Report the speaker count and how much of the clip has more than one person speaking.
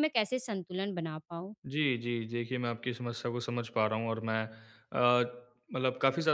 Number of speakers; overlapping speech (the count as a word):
two, no overlap